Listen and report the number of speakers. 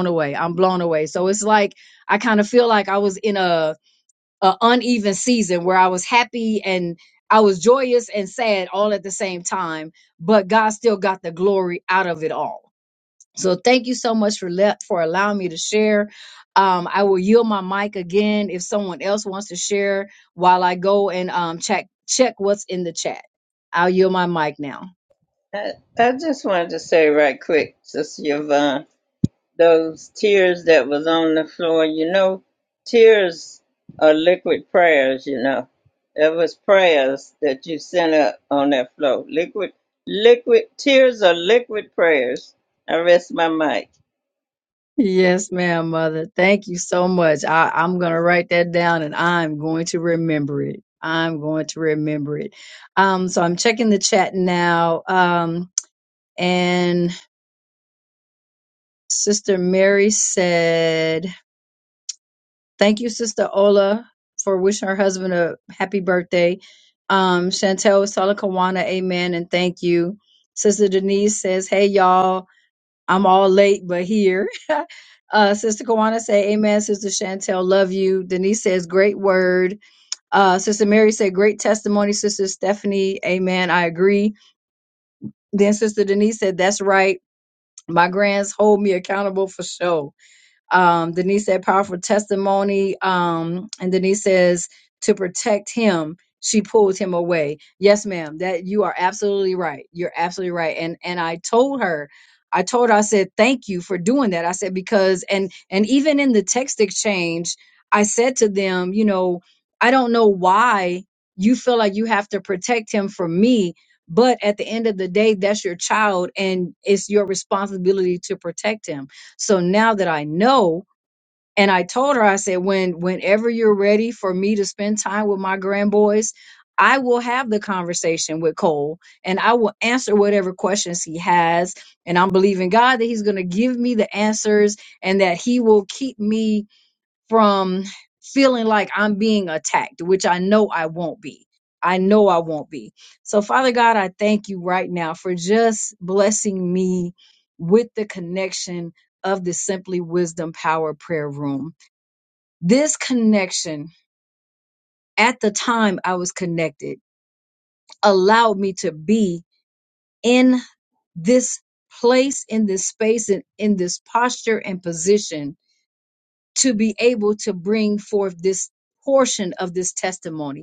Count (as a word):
two